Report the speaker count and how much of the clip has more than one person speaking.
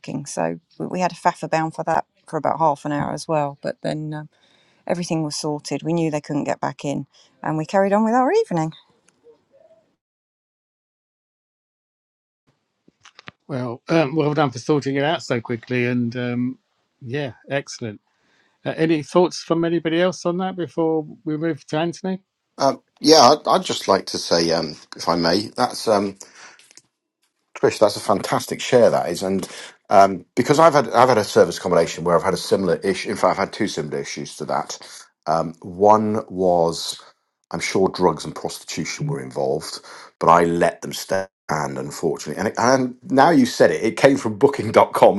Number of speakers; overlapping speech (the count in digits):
3, no overlap